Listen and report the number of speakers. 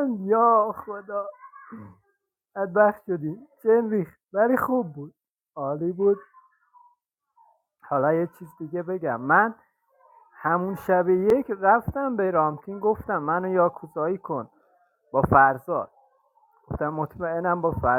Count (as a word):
one